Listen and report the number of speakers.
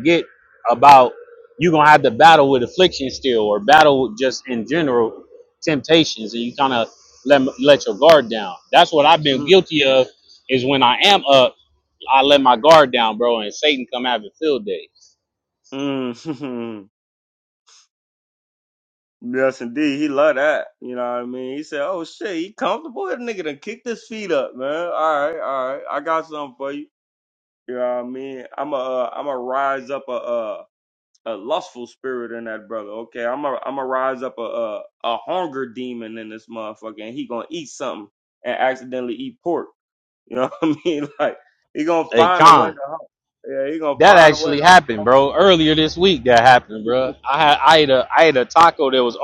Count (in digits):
2